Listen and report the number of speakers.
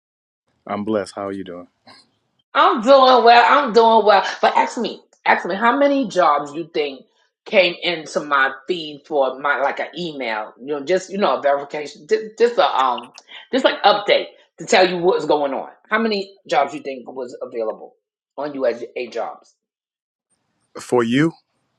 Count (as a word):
two